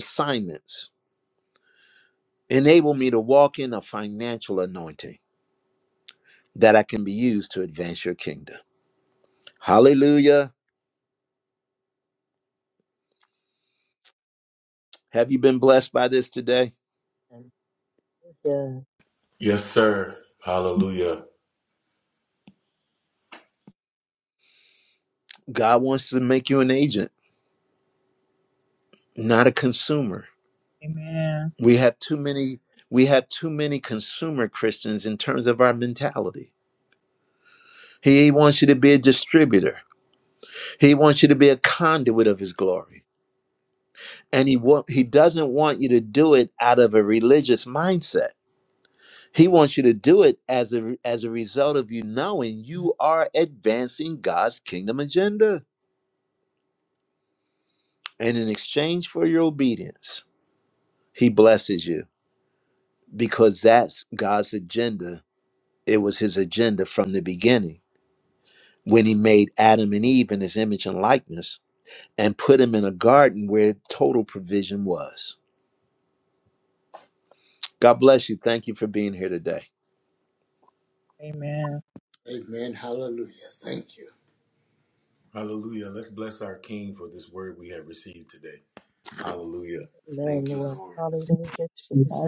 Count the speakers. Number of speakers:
5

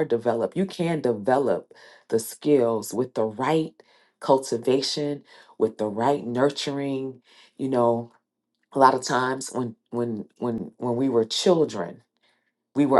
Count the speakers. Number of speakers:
1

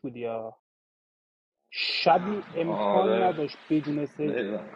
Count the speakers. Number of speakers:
2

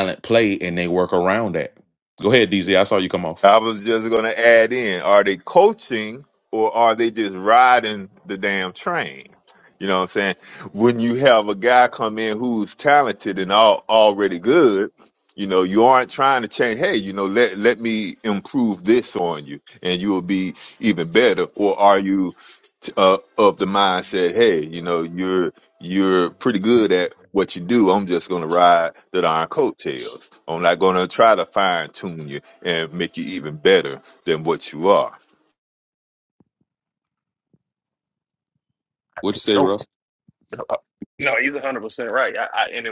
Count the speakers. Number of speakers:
3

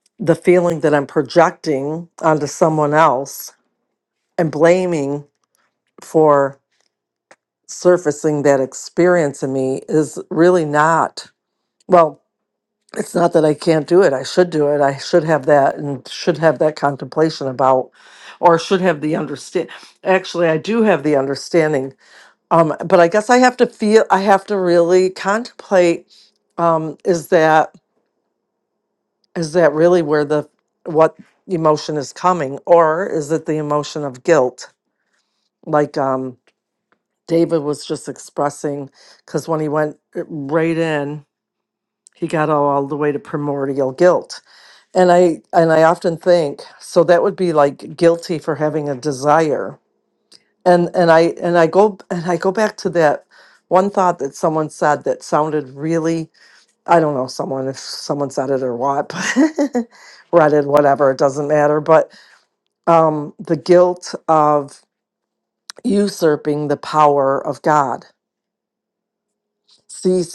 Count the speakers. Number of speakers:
1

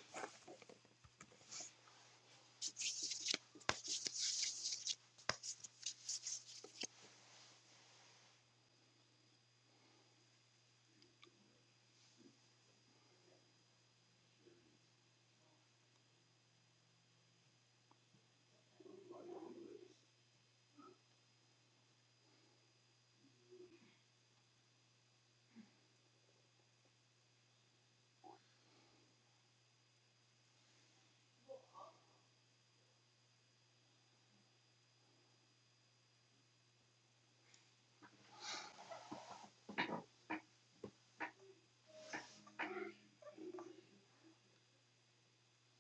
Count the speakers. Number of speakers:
0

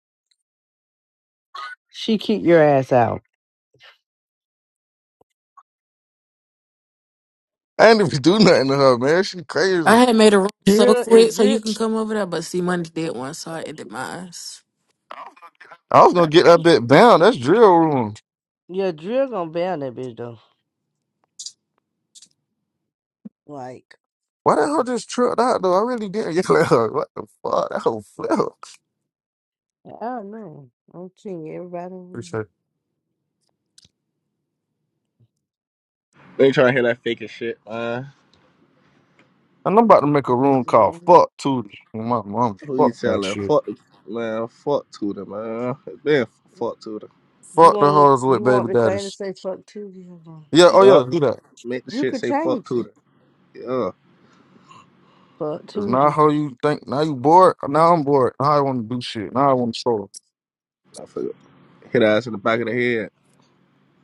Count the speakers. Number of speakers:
4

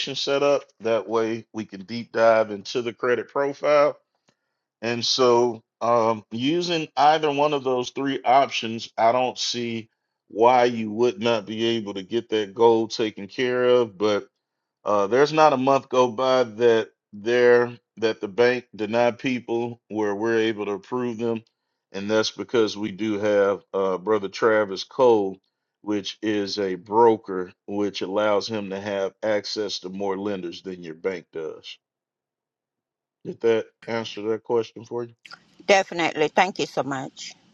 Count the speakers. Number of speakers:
2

